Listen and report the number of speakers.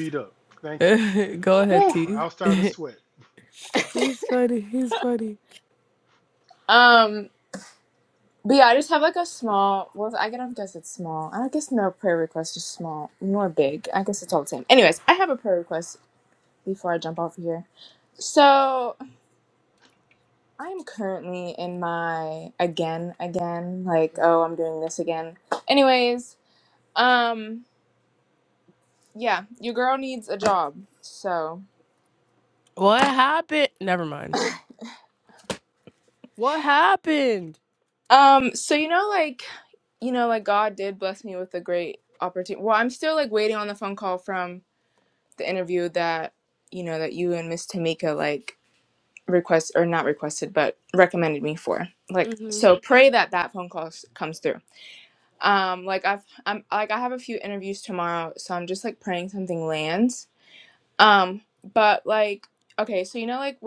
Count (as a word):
three